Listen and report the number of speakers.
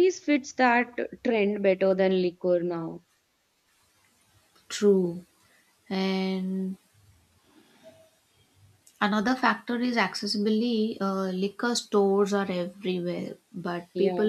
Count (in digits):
2